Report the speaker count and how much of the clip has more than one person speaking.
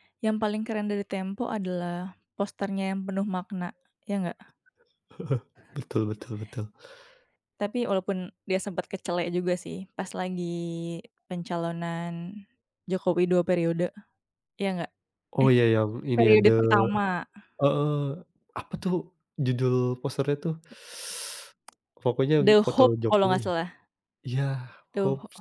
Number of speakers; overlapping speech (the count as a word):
two, about 7%